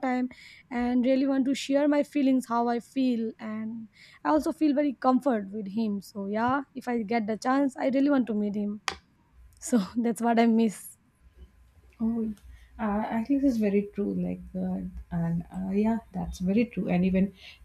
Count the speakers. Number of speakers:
two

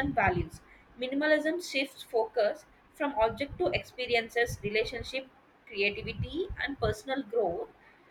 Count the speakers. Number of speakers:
one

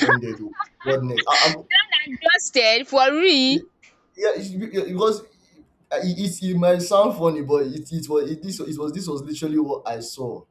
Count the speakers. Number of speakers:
two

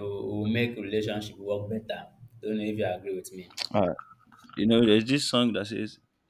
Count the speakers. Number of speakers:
two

